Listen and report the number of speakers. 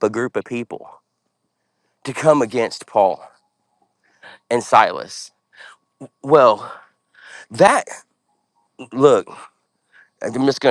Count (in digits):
1